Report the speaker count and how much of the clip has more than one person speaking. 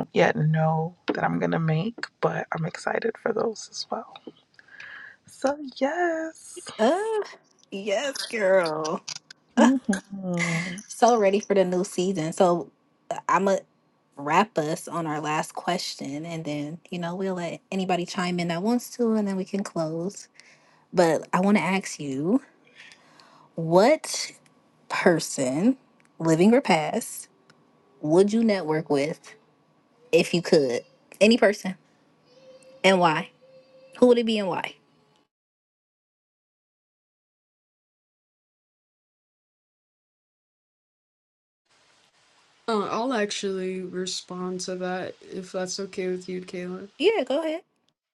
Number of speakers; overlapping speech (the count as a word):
three, no overlap